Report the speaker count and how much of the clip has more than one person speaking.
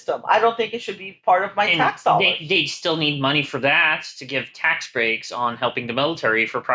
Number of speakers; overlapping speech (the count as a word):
two, about 10%